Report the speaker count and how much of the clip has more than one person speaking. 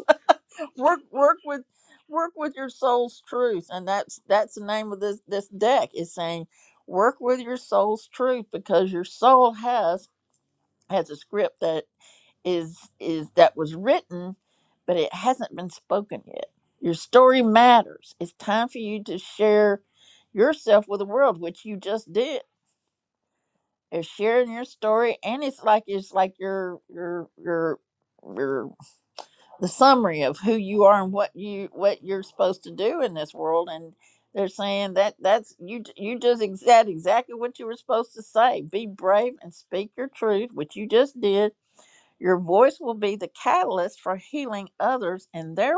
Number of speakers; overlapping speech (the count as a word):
one, no overlap